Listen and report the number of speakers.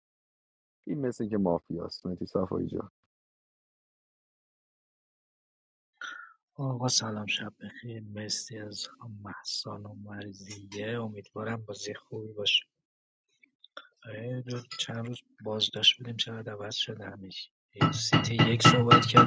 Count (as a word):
two